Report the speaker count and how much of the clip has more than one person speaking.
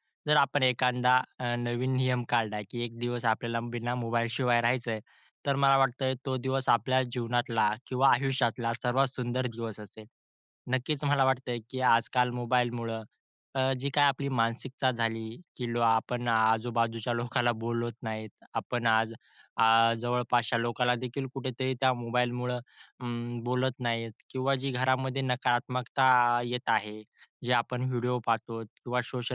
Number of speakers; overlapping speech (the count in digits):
1, no overlap